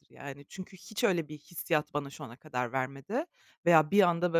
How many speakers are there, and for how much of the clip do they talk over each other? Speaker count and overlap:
1, no overlap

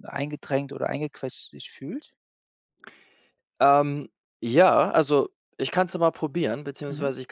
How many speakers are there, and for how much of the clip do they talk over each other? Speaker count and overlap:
2, about 3%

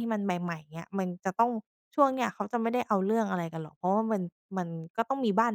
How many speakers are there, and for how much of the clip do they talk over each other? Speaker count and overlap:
1, no overlap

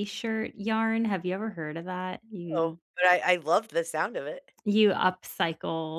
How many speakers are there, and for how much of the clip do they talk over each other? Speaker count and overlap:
2, about 4%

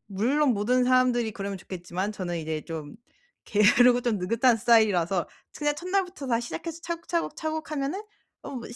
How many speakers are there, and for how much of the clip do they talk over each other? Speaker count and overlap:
1, no overlap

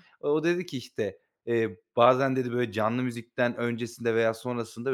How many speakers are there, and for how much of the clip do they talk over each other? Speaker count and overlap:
1, no overlap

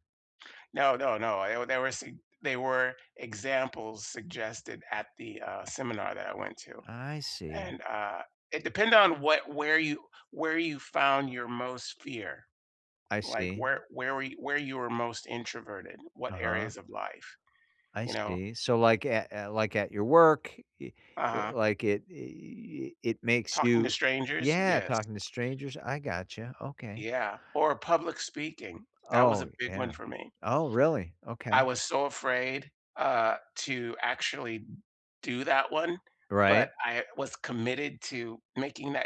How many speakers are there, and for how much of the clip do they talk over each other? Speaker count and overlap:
2, about 9%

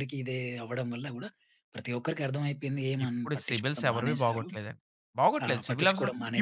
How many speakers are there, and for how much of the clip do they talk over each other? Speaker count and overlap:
2, about 40%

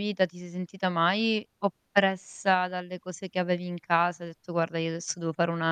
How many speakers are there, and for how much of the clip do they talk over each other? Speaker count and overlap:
1, no overlap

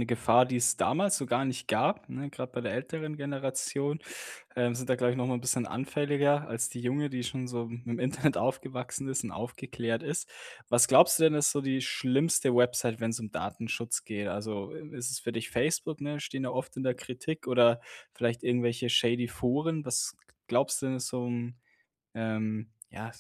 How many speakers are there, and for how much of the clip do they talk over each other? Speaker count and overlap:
1, no overlap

